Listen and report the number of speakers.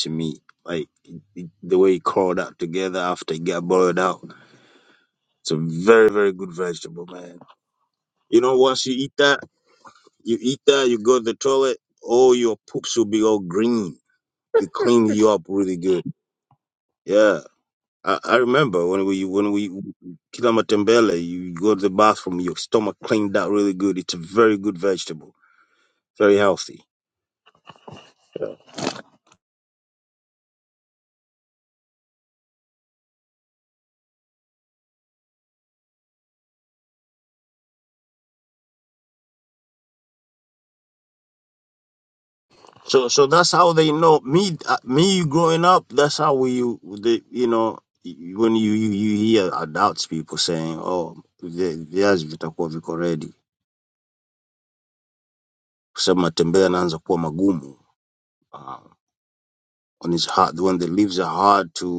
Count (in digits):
1